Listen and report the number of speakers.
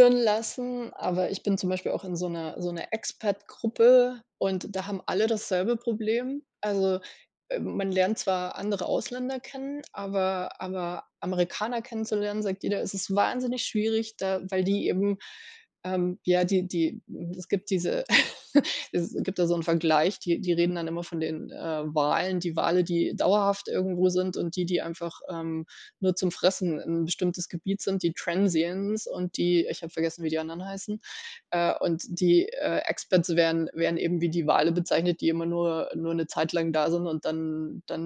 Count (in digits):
1